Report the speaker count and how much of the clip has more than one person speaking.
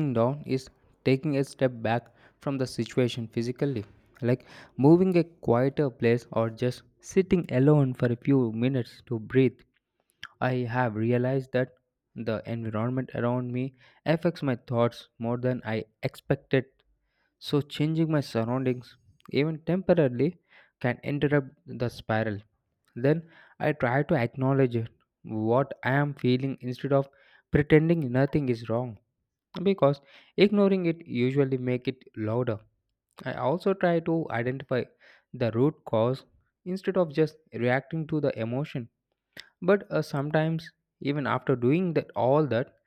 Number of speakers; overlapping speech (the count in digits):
1, no overlap